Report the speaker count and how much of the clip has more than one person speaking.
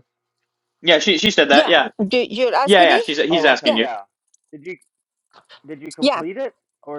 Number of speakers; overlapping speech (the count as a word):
three, about 23%